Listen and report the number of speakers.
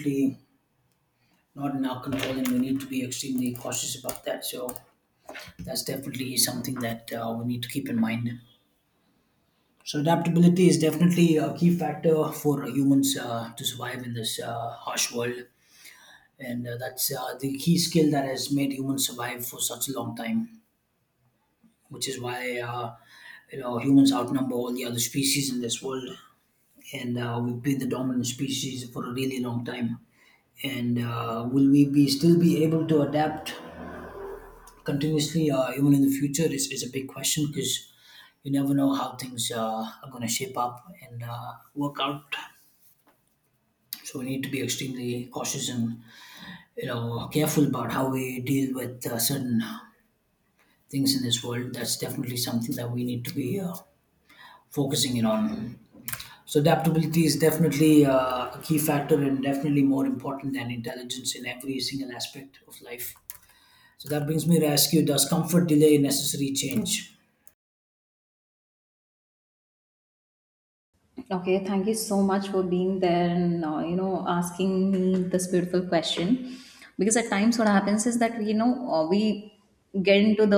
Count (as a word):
two